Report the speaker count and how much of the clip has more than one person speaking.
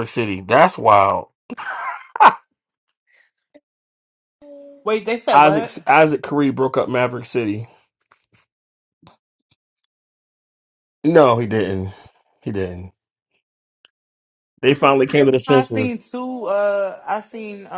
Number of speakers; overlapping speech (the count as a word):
two, about 5%